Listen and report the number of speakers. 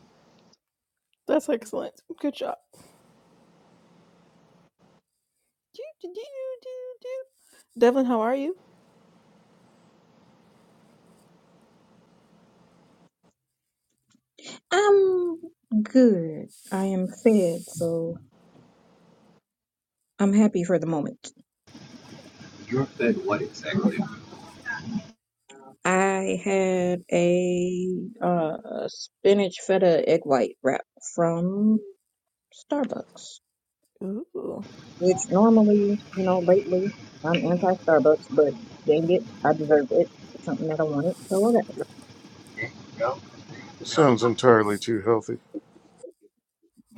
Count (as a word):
four